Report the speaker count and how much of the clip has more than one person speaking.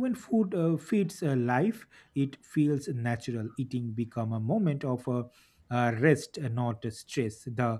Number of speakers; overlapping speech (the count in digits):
1, no overlap